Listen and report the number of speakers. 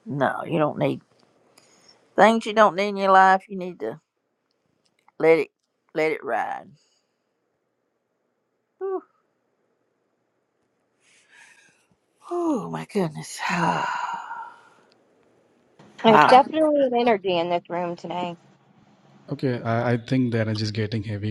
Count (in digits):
3